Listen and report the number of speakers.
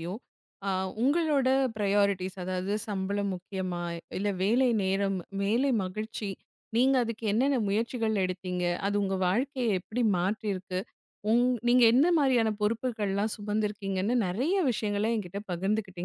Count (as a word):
one